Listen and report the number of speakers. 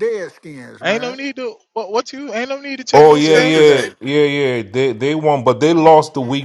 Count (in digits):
3